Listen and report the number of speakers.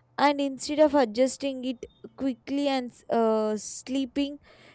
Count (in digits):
1